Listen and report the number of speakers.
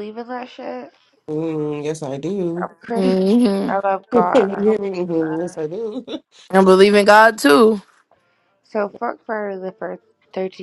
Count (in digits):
3